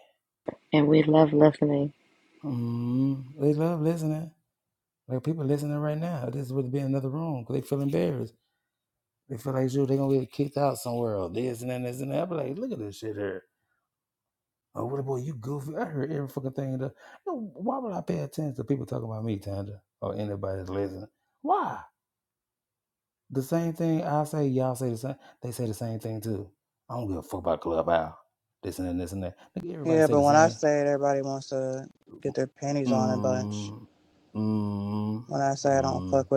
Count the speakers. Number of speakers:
3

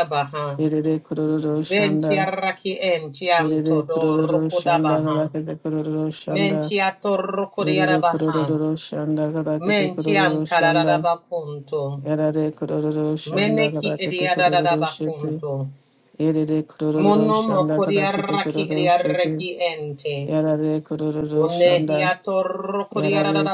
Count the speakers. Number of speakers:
2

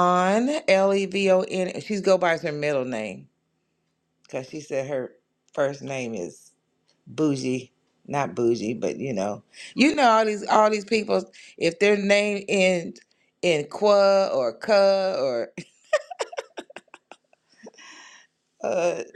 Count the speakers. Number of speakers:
1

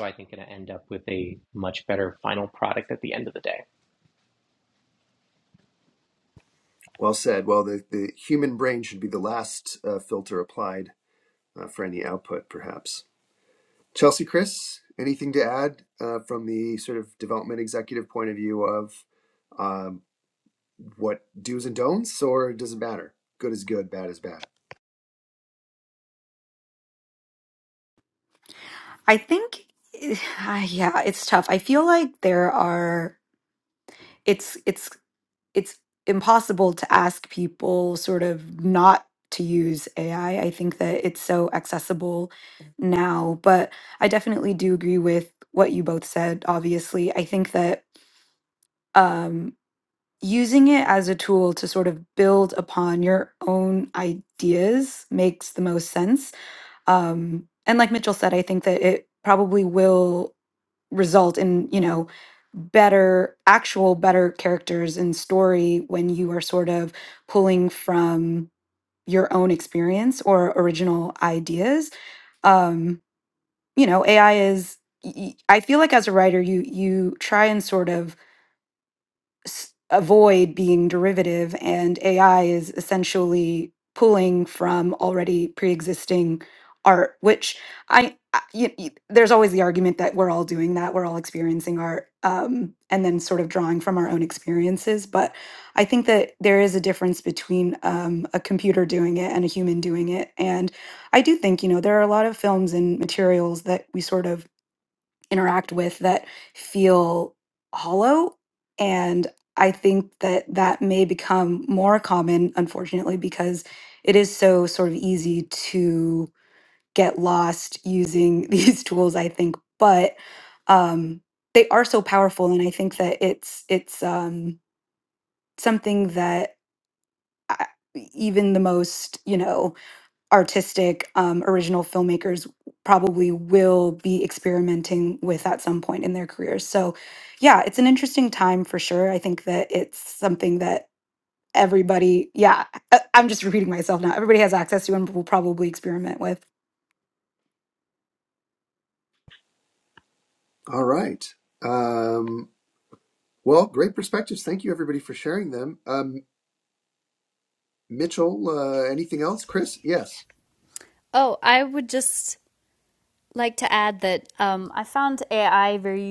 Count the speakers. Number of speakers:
4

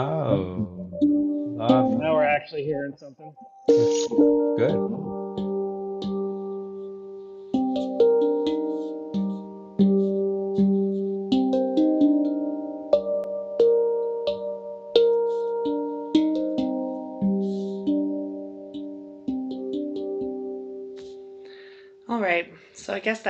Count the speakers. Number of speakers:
3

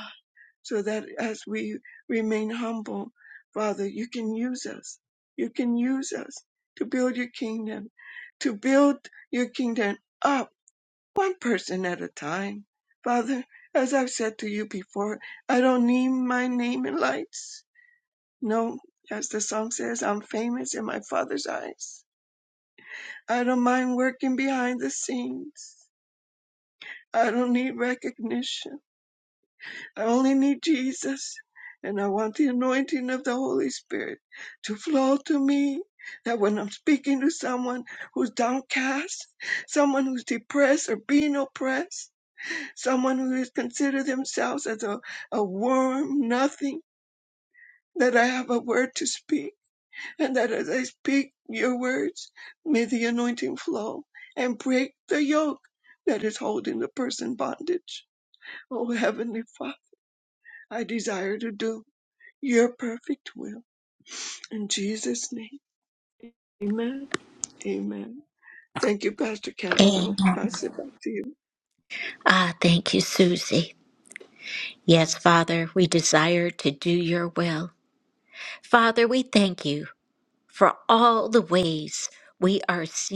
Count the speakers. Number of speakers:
2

